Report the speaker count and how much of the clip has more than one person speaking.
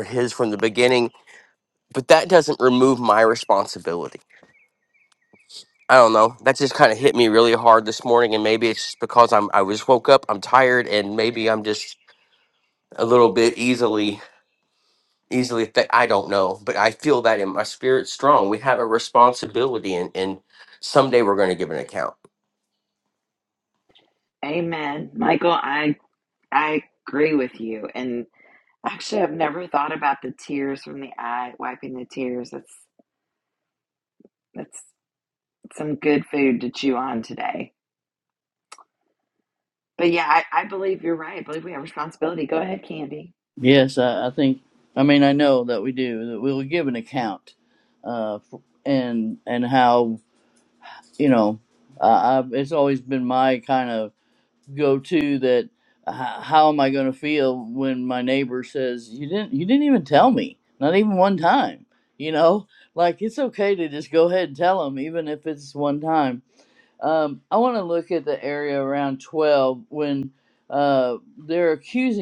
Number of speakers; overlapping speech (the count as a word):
three, no overlap